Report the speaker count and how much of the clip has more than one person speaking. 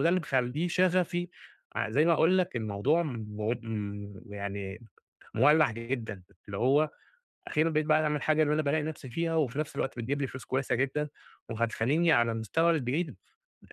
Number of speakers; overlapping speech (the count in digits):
1, no overlap